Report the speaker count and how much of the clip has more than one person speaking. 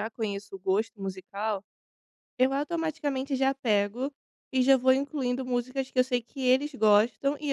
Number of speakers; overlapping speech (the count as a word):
one, no overlap